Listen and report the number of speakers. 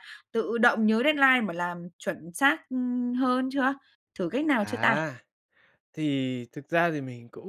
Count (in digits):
2